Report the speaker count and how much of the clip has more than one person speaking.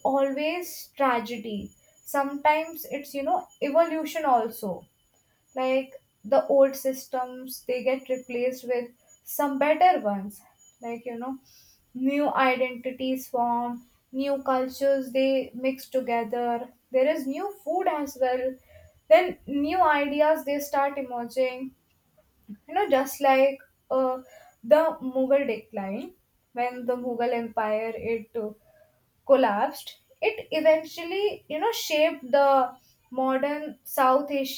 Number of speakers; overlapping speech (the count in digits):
1, no overlap